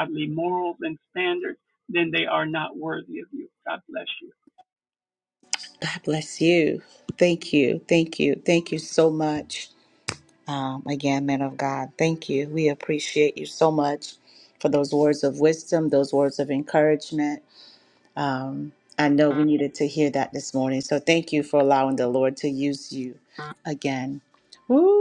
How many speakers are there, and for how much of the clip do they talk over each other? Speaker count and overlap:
2, no overlap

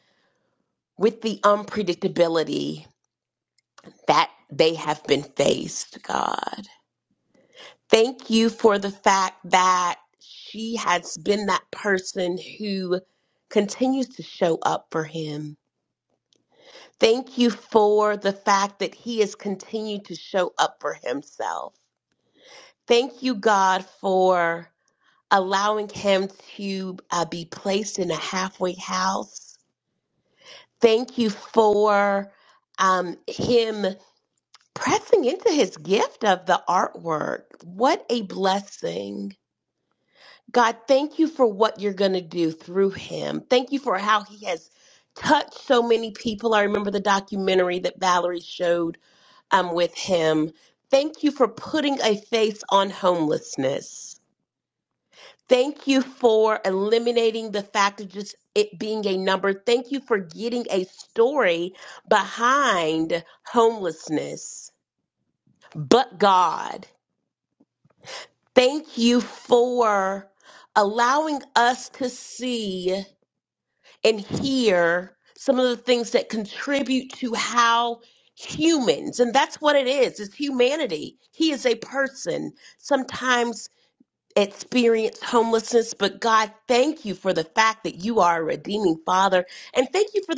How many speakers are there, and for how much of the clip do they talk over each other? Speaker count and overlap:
1, no overlap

